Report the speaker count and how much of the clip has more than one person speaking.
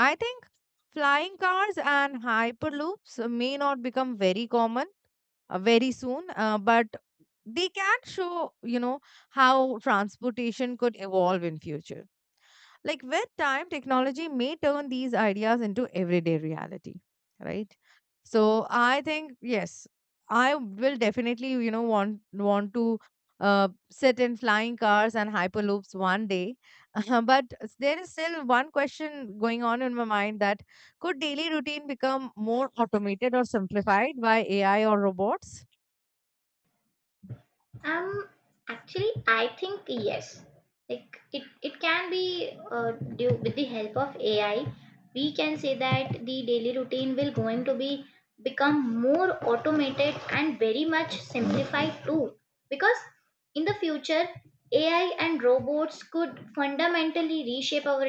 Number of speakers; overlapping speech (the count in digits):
2, no overlap